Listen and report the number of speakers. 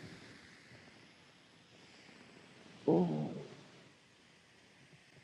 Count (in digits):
0